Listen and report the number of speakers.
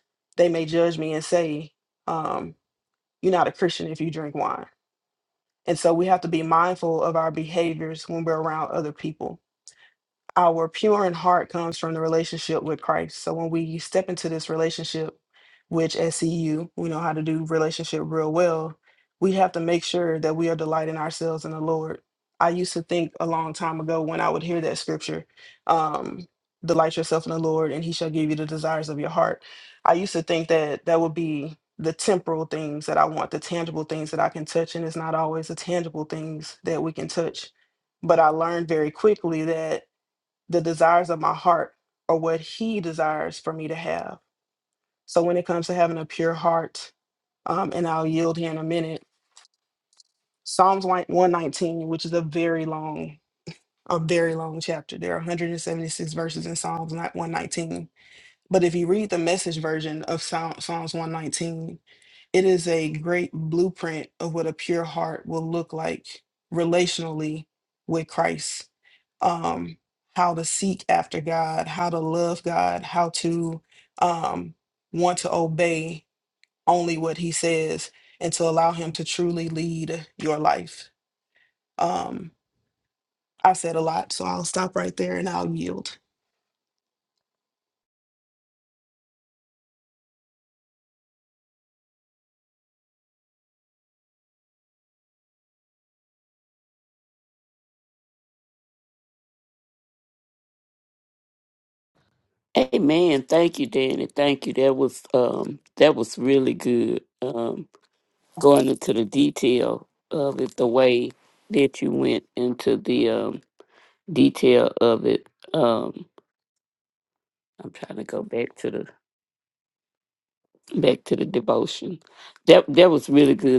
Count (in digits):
2